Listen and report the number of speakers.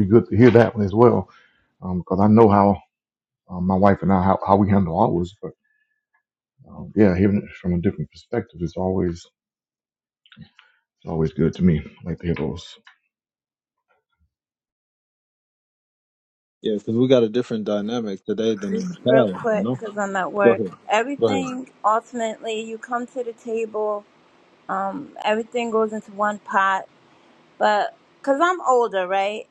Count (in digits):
3